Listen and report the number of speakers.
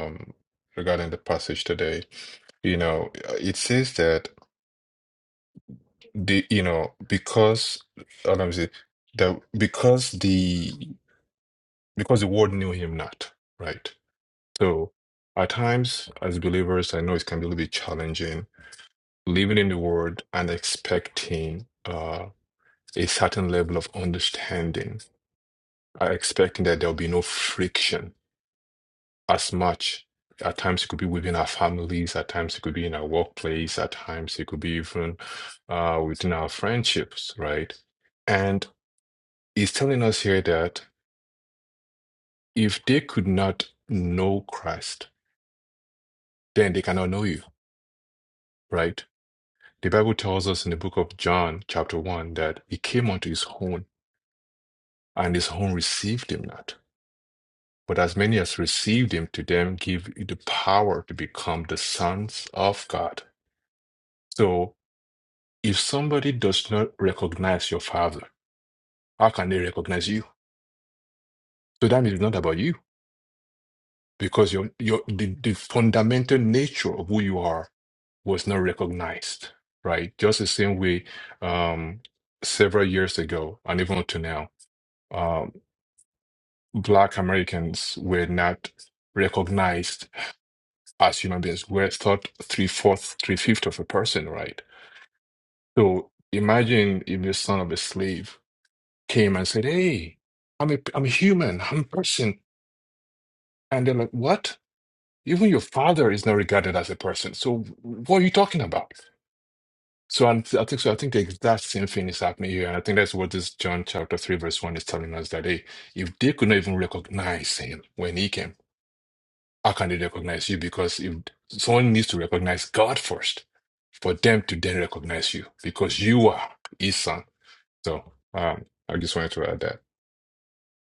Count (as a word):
one